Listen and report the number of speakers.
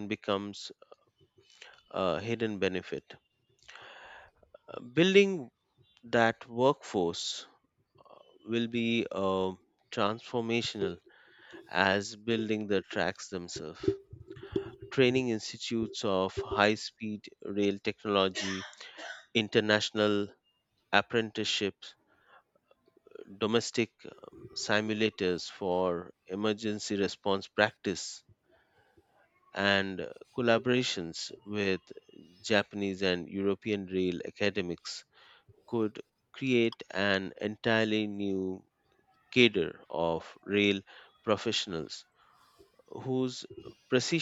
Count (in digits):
1